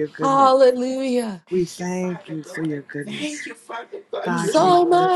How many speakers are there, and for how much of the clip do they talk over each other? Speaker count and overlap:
3, about 55%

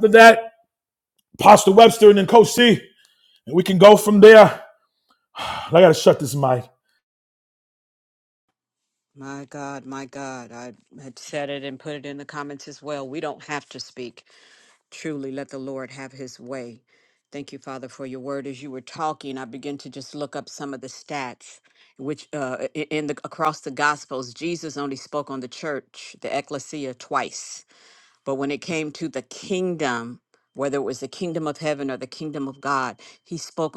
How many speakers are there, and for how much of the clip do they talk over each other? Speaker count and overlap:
2, no overlap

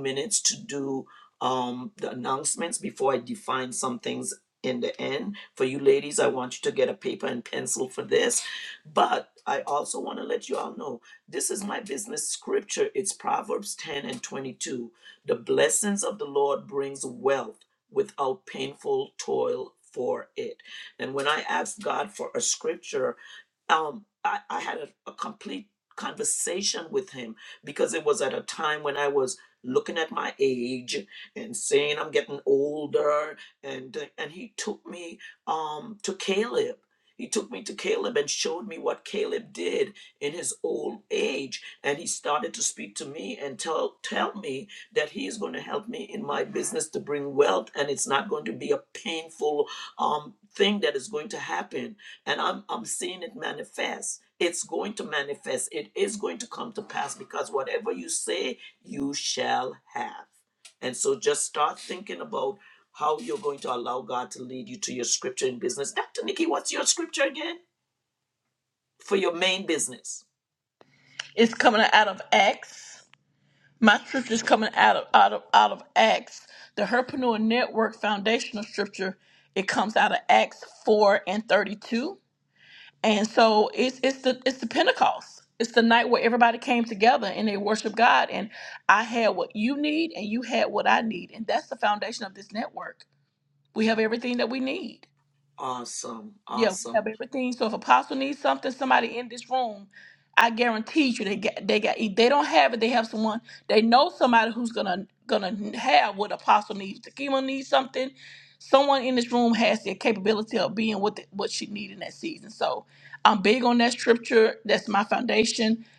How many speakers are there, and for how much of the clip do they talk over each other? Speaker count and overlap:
2, under 1%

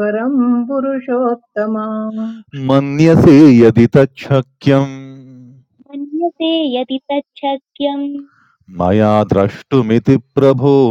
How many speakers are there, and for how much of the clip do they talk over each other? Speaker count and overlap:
3, no overlap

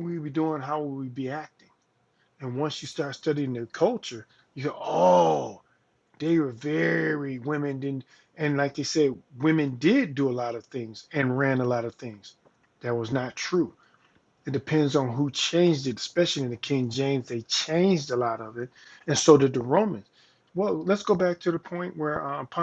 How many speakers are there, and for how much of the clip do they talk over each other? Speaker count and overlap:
1, no overlap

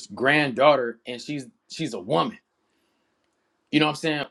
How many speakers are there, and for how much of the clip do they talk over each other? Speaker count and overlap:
1, no overlap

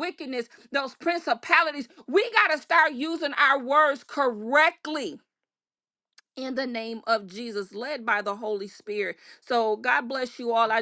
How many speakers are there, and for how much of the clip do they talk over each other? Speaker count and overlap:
1, no overlap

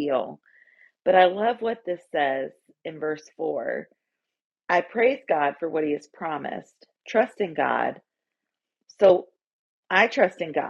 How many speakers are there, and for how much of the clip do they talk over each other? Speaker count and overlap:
1, no overlap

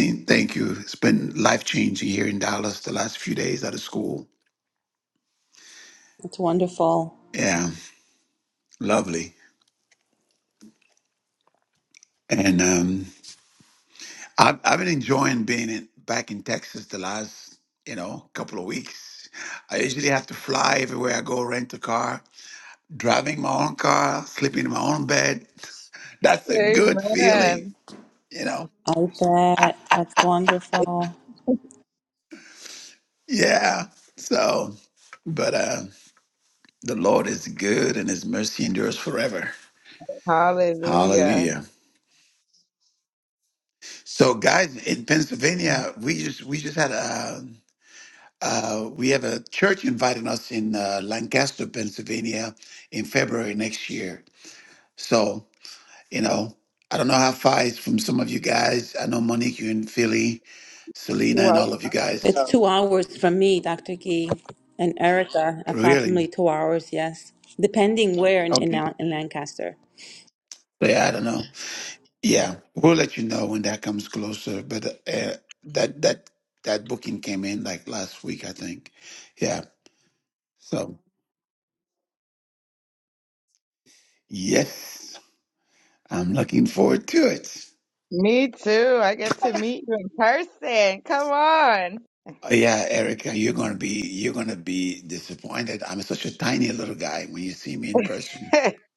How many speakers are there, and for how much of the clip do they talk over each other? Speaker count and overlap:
3, about 4%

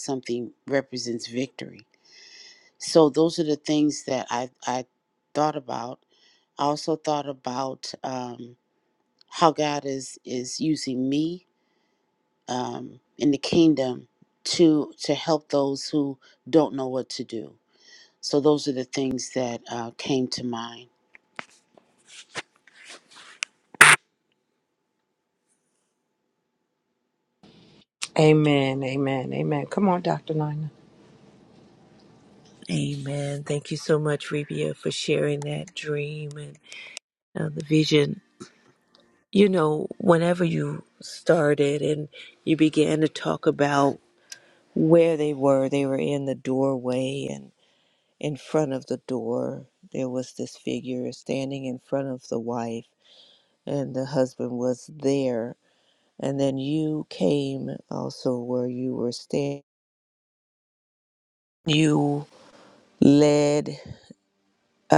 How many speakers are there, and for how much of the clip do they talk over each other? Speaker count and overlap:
3, no overlap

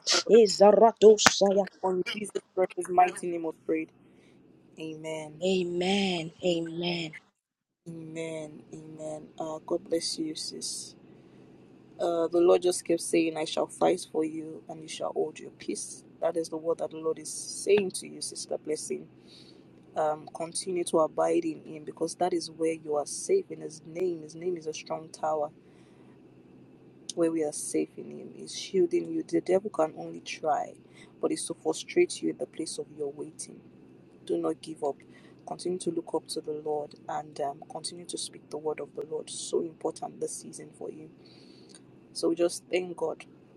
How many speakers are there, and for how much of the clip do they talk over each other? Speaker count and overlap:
2, no overlap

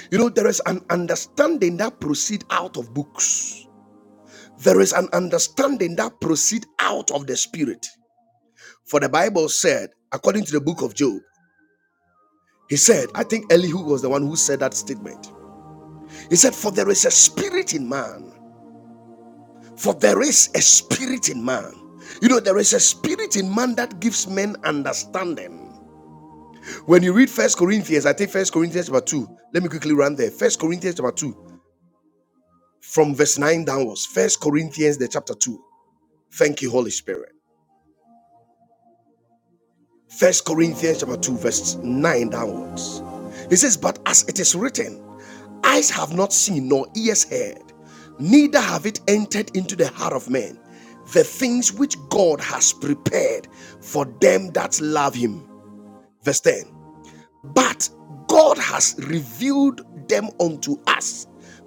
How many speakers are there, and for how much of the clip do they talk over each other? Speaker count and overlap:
1, no overlap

